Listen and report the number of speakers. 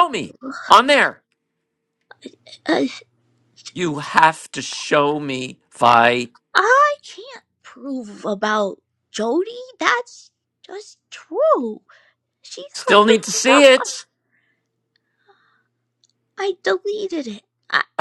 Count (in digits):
2